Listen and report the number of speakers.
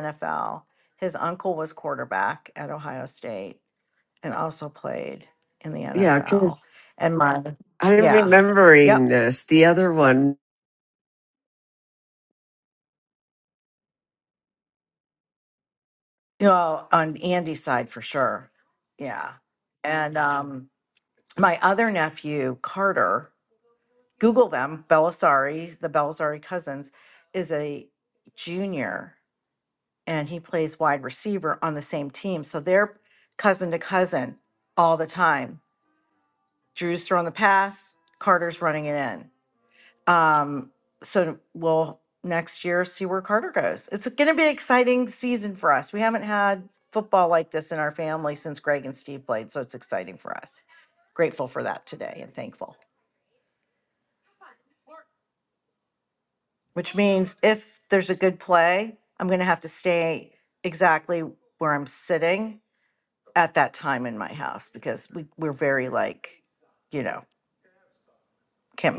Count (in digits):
2